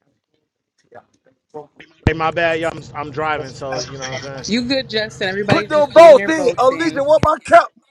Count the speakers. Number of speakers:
three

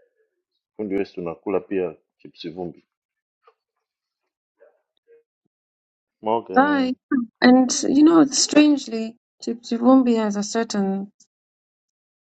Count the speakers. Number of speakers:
two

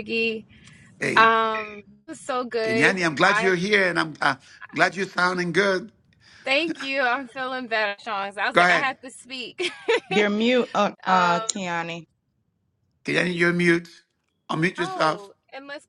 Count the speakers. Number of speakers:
three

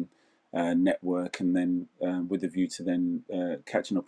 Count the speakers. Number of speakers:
one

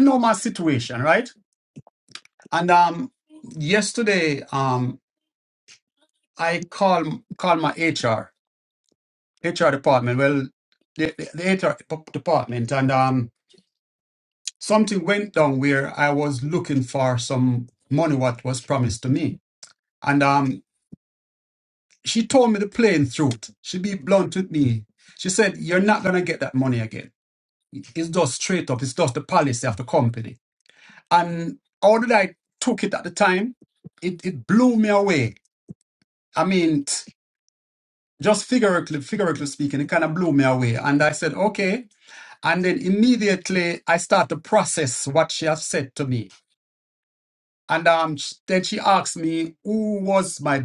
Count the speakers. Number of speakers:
one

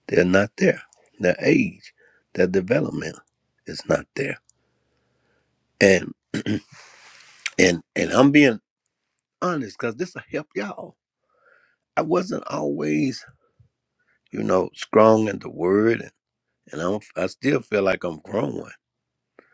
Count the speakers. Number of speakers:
one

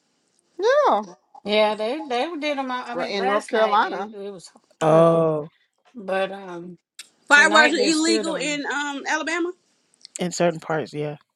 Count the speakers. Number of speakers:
four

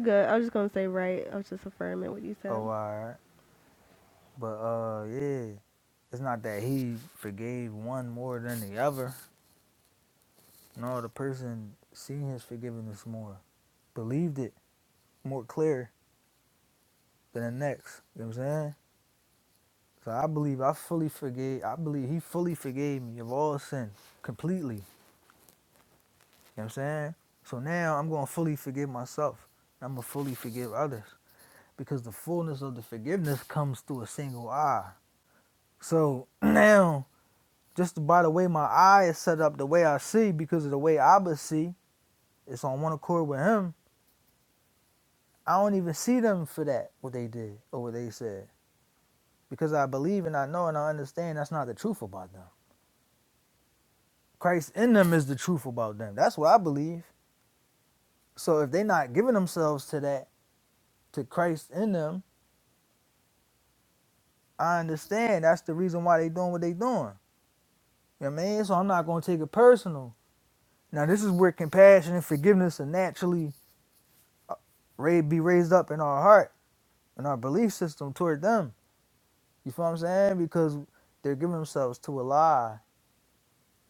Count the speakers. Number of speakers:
two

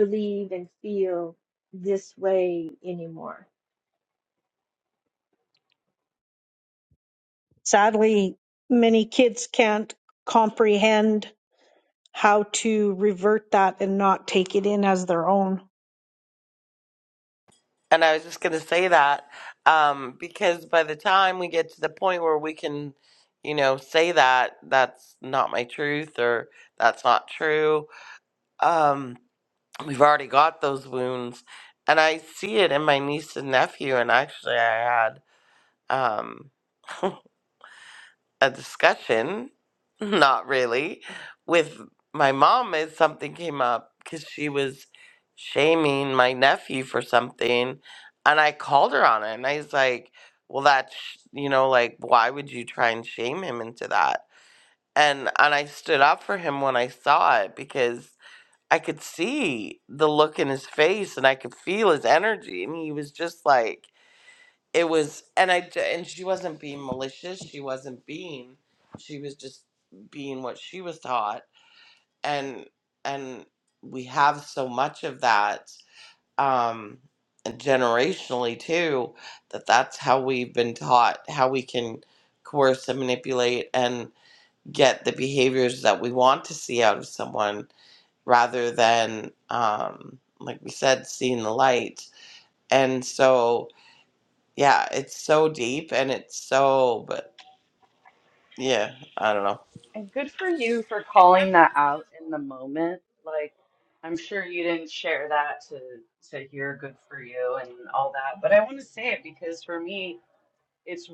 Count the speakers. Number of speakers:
four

